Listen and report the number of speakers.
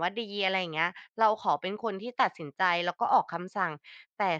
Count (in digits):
1